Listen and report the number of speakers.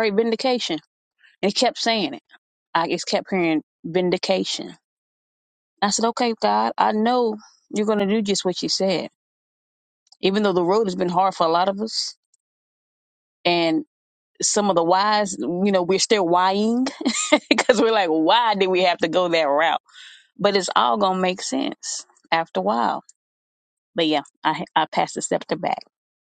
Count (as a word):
one